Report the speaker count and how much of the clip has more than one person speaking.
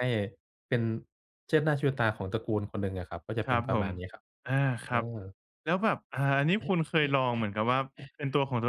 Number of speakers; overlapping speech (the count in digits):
2, about 7%